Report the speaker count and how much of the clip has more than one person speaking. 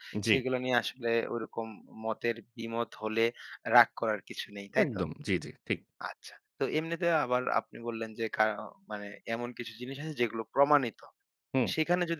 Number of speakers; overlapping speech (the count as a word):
two, about 4%